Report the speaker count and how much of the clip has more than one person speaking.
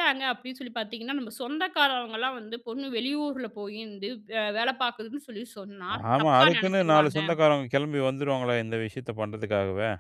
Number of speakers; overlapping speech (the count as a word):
two, about 11%